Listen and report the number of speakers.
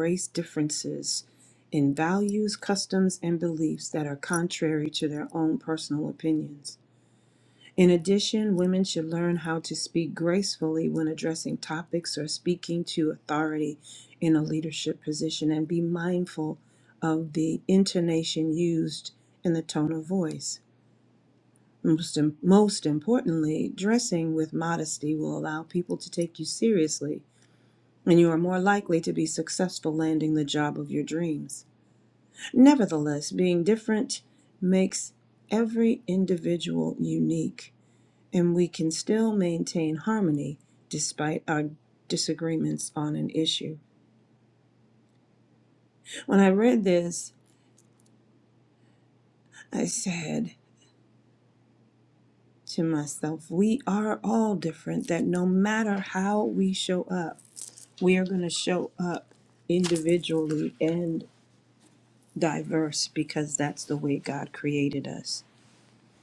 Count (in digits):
1